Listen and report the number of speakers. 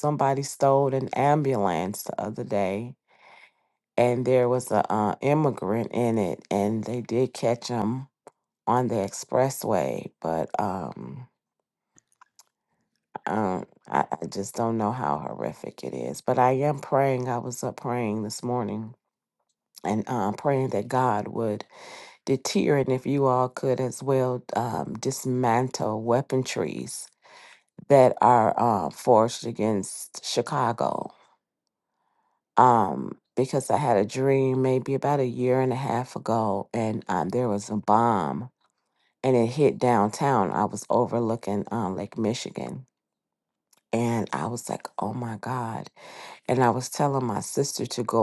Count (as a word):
one